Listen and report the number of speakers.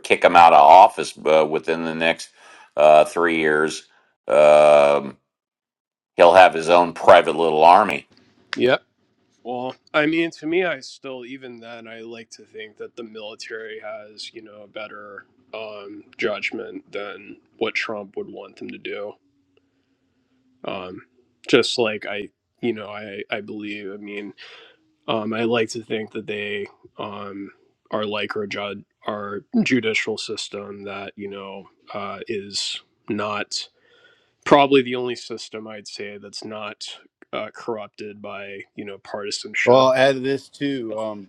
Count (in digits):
3